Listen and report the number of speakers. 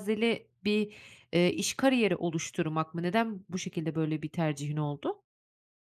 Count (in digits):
1